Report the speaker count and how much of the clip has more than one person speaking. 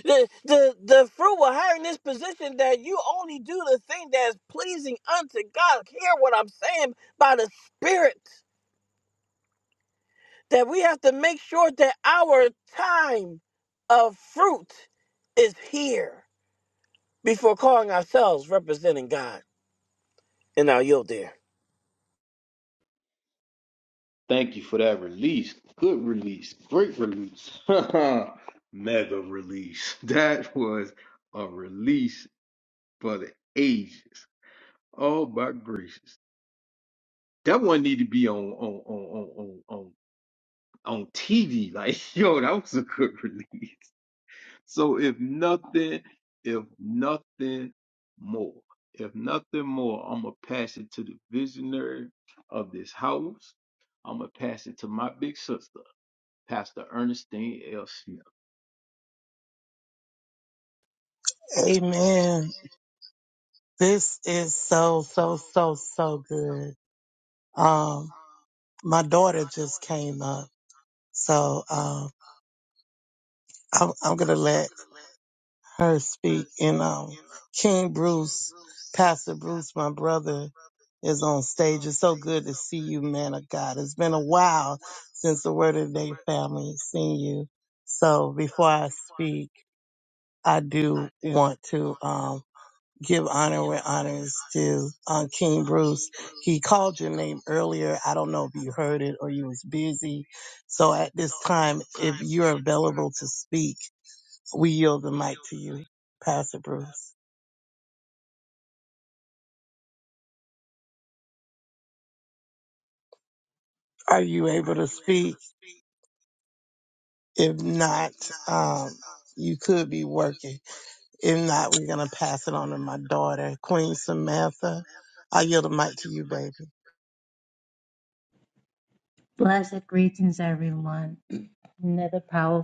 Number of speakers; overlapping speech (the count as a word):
four, no overlap